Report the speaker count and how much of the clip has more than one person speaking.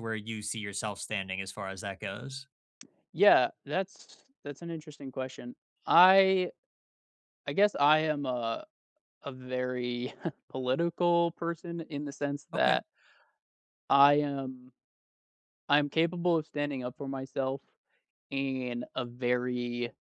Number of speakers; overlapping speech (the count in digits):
2, about 1%